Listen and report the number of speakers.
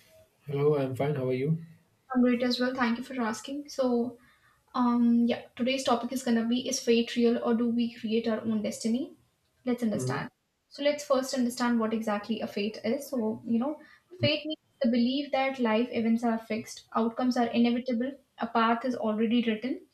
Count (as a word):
two